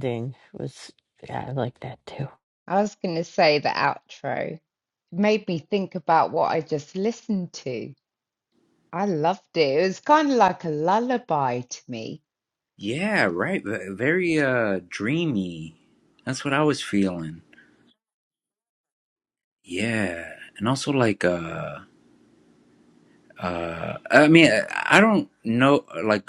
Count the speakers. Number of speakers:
three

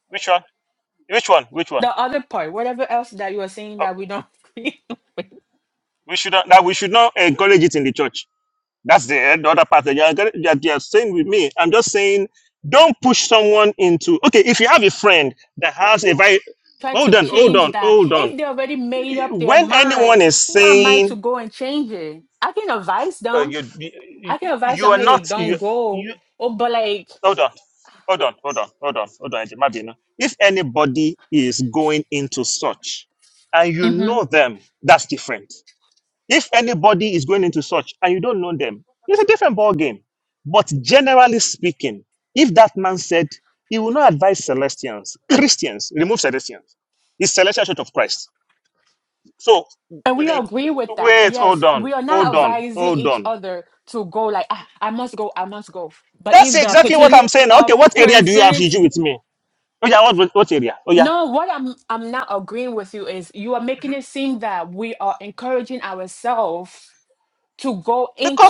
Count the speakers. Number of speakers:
two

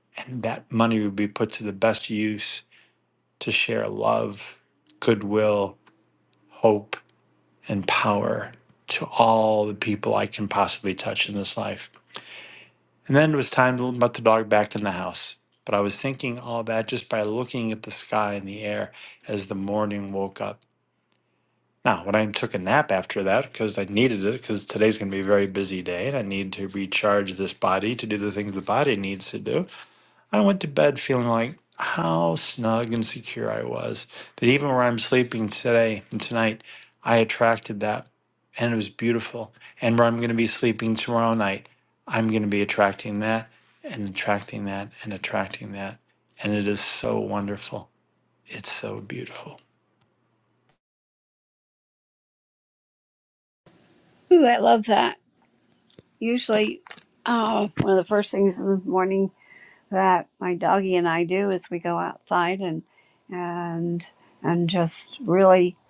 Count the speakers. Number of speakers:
two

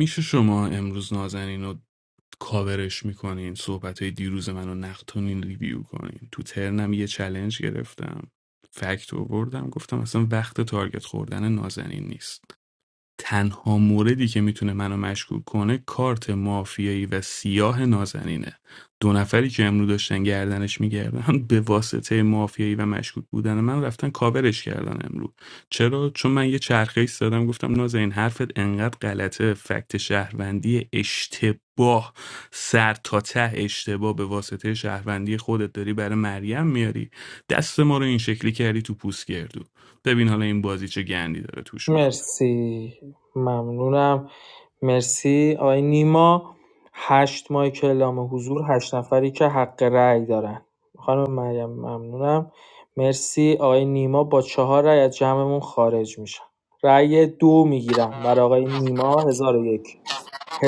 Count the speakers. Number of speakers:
two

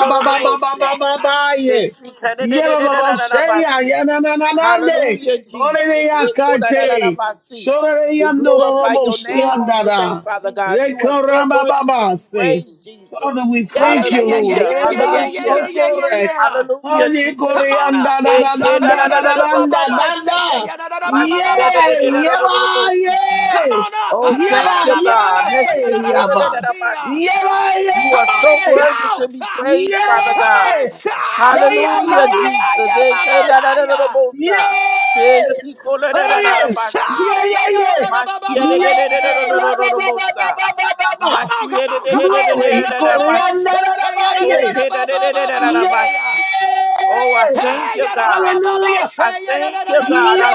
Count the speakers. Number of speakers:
three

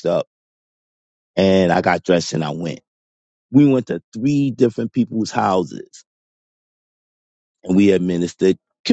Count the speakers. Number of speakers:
one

